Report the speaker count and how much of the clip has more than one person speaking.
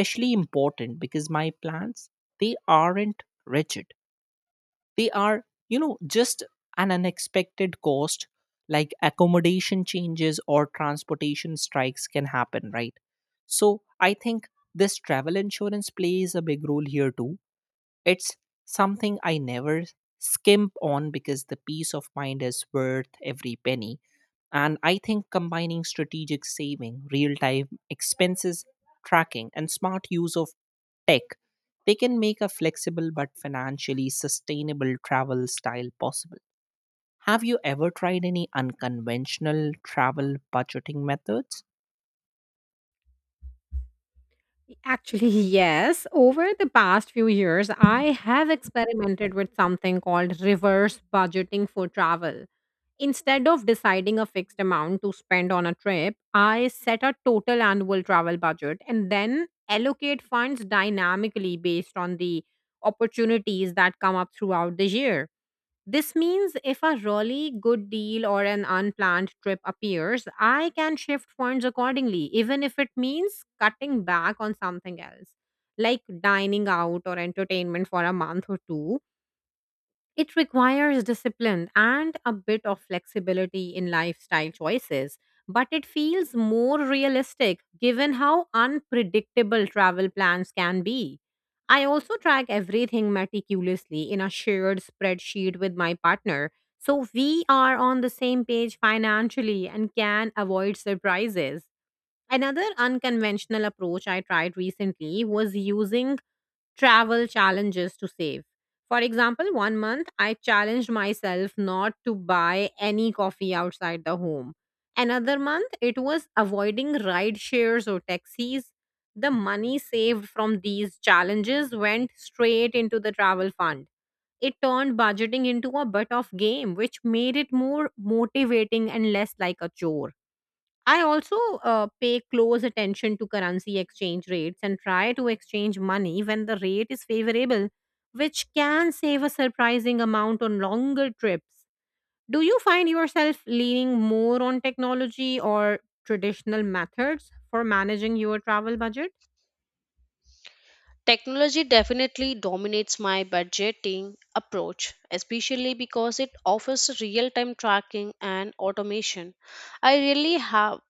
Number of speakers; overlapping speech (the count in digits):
3, no overlap